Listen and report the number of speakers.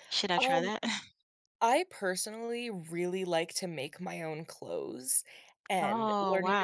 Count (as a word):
two